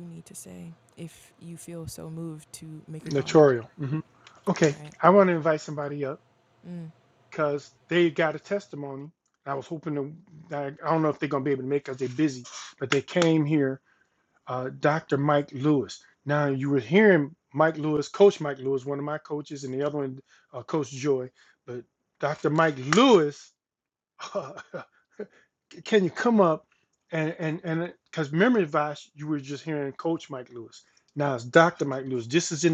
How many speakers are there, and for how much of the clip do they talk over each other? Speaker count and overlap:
2, about 3%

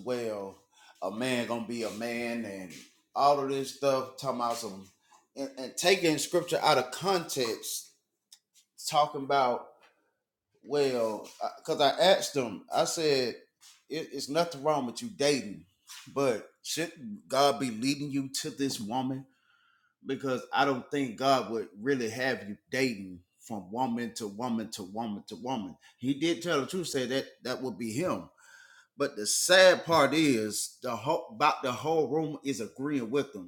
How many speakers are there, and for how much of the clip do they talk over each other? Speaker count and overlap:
1, no overlap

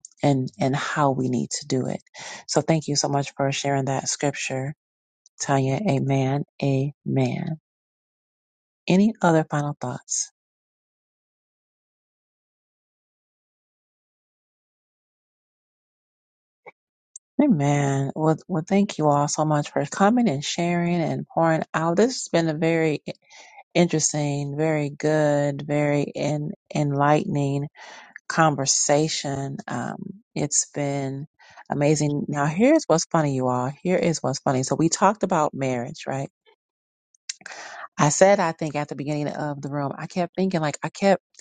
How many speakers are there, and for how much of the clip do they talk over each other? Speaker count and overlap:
1, no overlap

